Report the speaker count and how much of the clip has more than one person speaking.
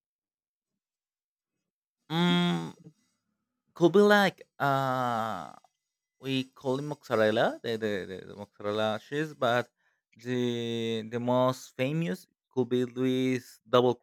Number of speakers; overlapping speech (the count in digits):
1, no overlap